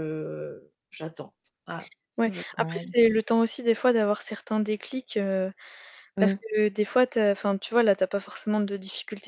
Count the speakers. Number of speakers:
2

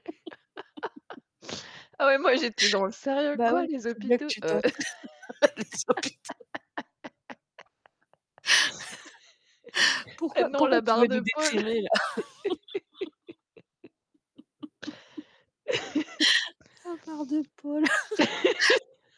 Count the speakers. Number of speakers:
2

